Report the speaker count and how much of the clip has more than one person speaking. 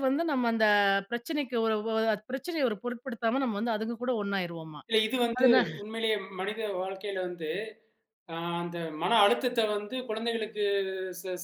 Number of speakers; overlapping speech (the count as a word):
two, about 3%